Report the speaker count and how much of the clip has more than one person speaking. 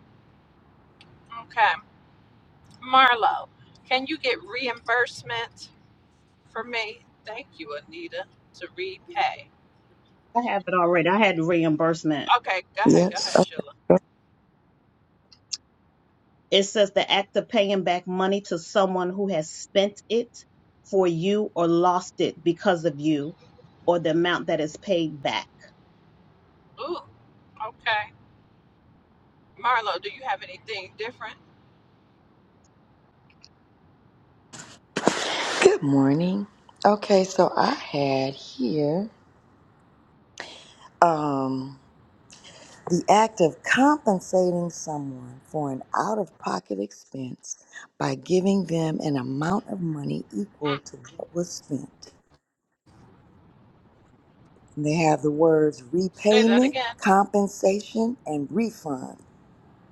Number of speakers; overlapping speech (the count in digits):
3, about 2%